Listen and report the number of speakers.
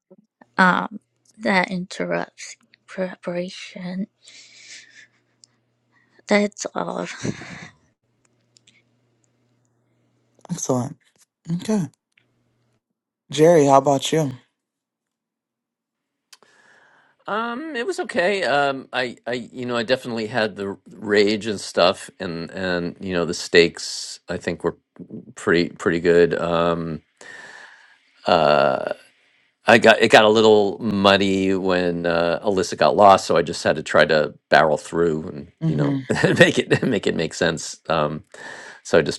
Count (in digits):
3